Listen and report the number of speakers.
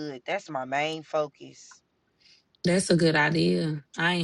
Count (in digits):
2